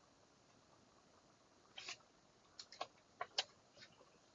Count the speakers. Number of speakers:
0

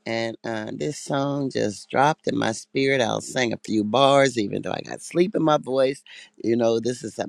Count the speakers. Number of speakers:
1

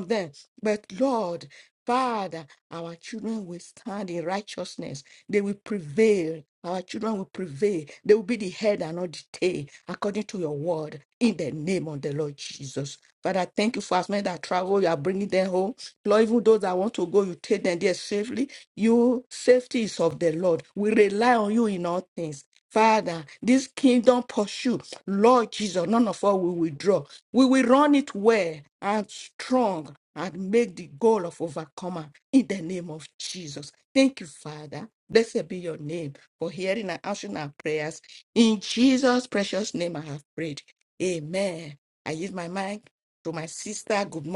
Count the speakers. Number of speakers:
1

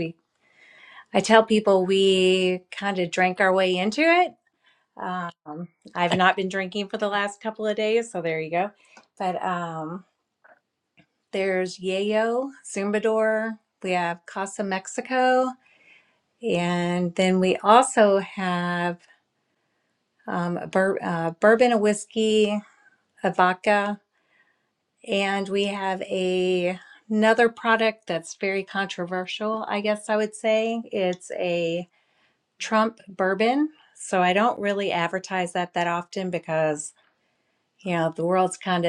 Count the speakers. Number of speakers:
1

